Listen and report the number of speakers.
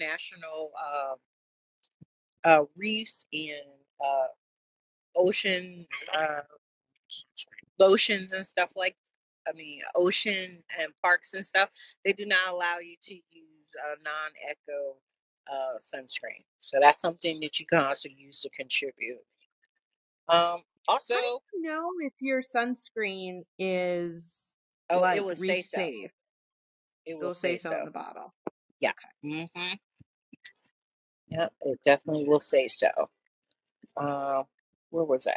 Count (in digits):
2